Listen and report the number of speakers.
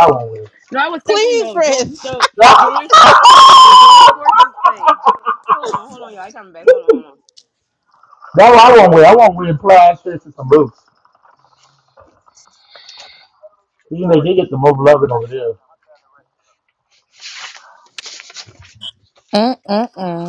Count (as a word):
three